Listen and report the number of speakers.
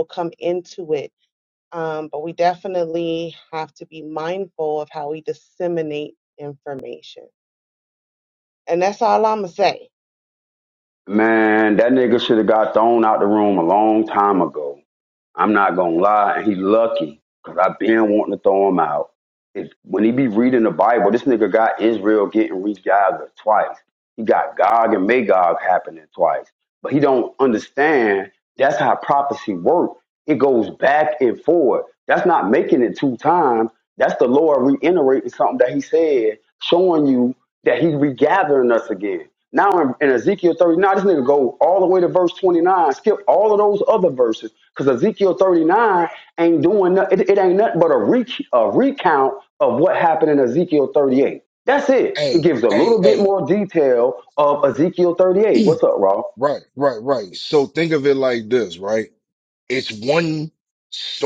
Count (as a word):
three